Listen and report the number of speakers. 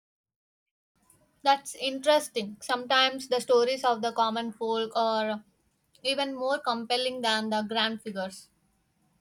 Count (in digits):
1